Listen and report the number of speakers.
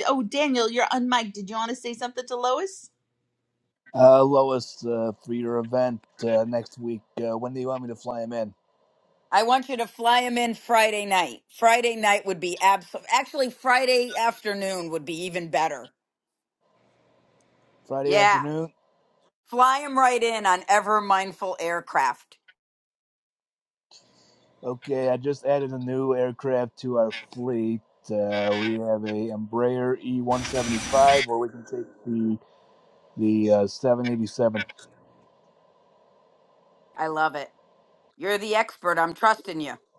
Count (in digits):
3